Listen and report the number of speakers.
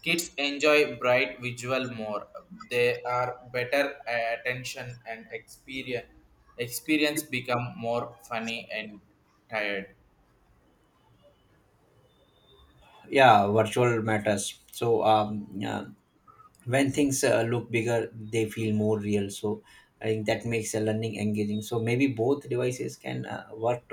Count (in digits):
2